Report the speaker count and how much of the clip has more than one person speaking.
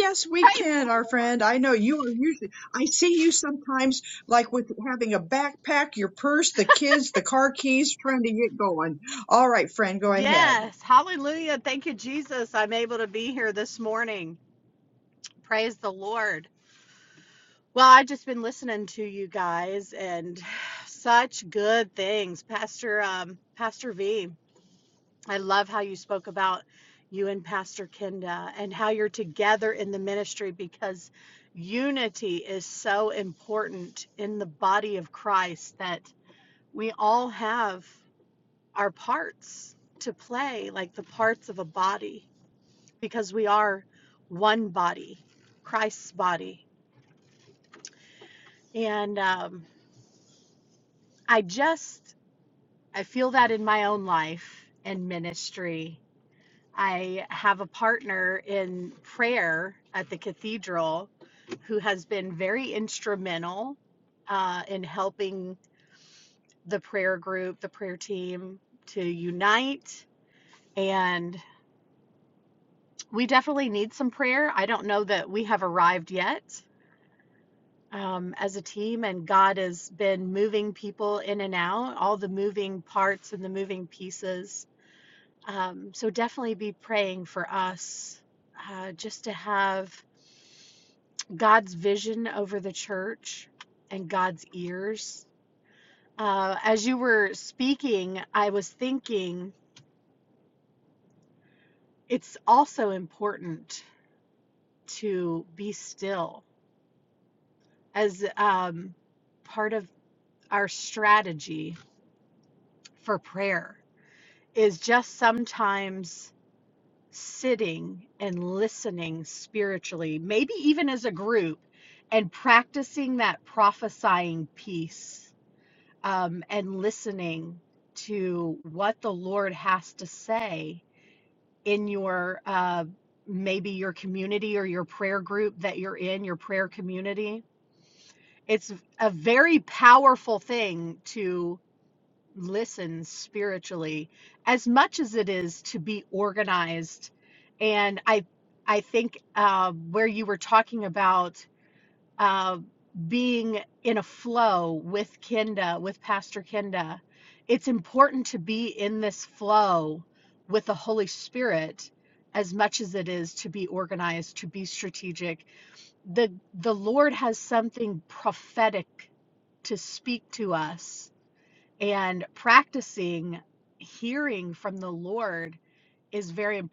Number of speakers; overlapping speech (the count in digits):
2, about 1%